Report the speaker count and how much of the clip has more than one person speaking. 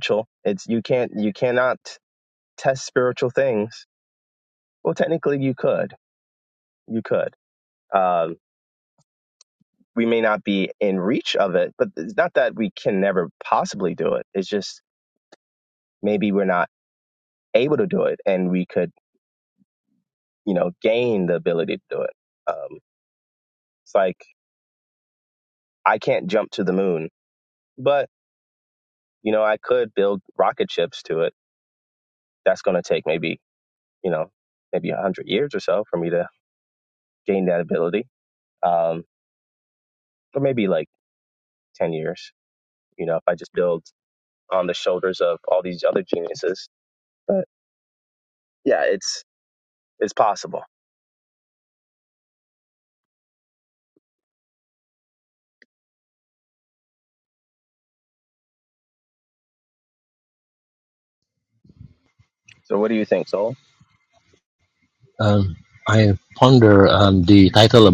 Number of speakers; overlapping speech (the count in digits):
2, no overlap